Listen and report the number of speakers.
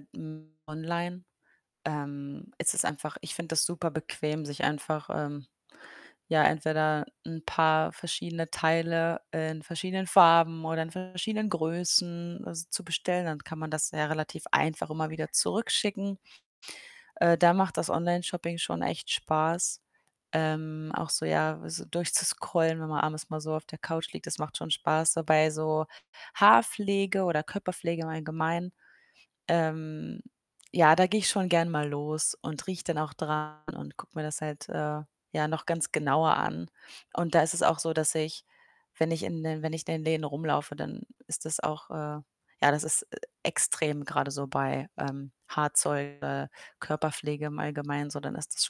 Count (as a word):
one